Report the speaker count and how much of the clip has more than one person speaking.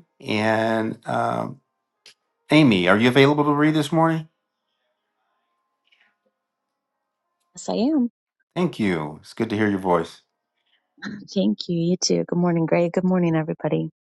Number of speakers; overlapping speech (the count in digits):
2, no overlap